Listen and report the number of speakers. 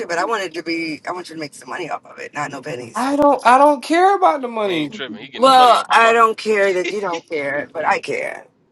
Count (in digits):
3